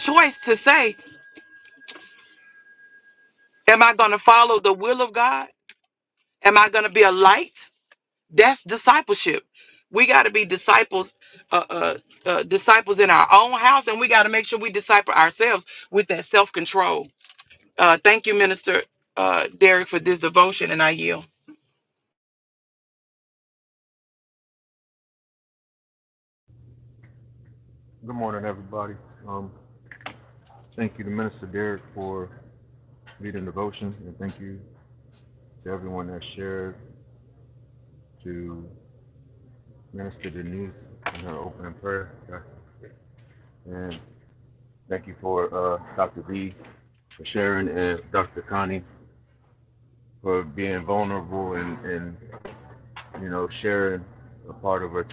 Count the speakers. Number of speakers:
two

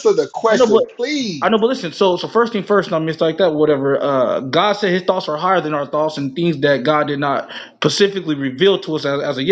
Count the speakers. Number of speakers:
two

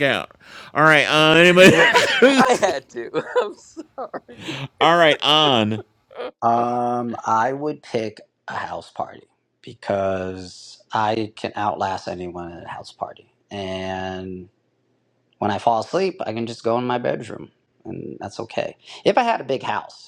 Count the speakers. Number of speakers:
three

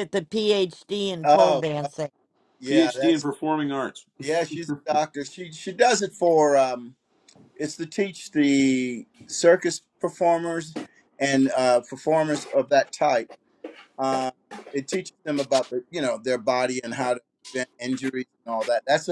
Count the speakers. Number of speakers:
three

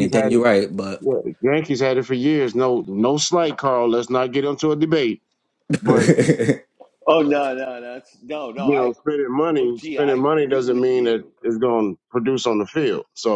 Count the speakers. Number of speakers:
three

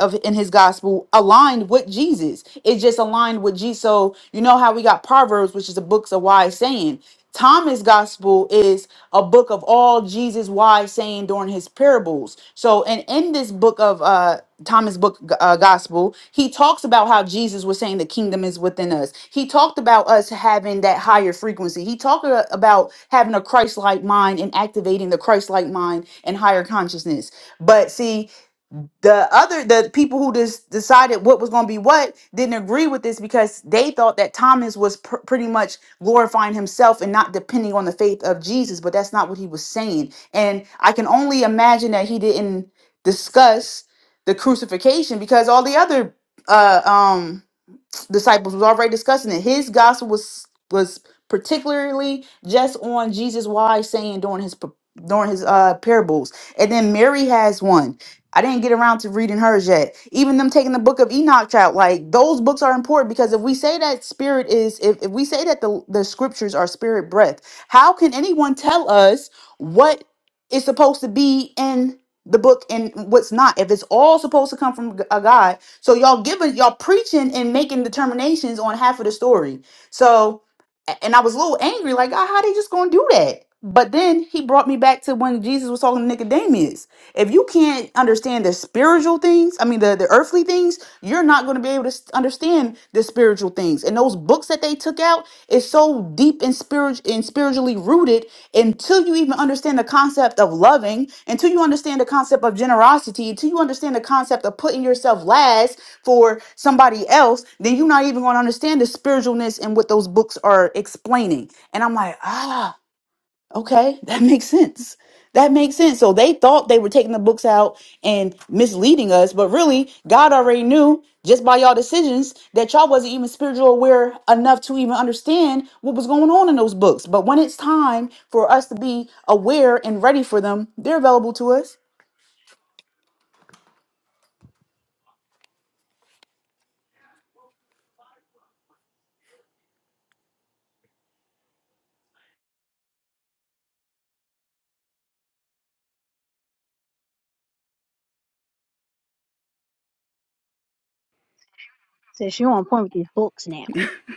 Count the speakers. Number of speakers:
two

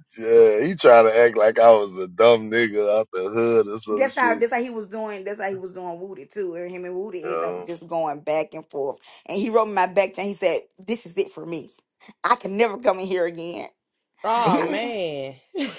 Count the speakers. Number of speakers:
three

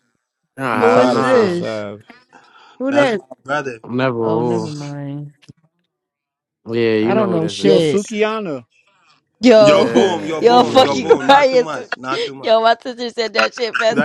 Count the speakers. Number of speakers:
five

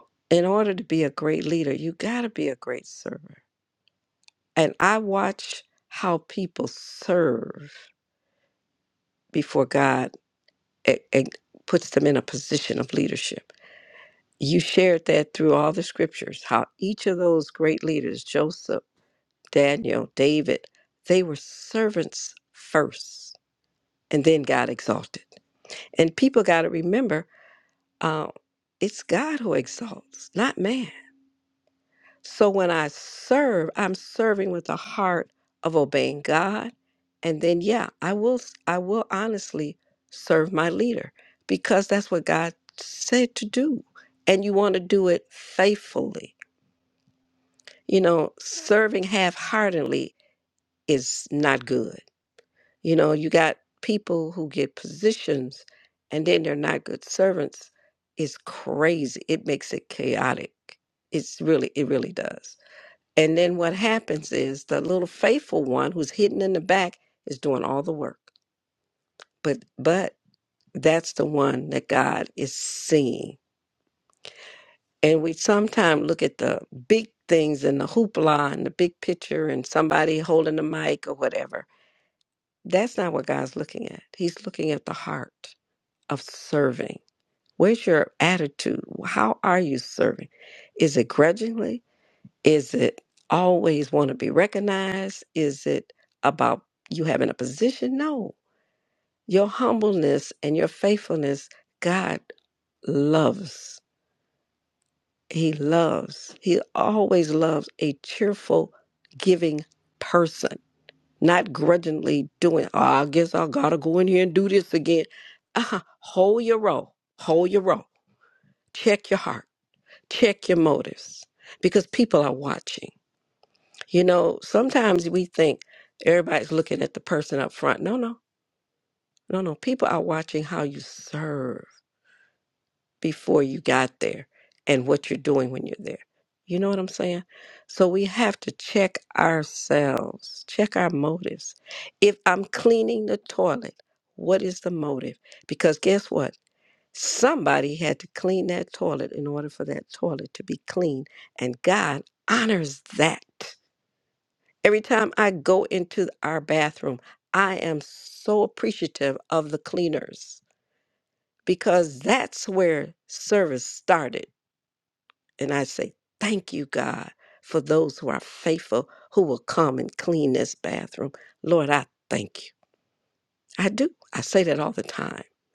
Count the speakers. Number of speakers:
one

